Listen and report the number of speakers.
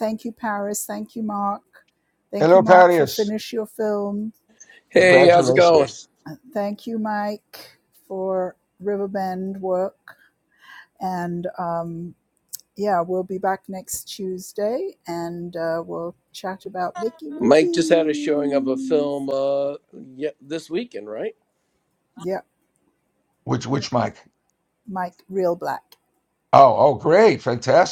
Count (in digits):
3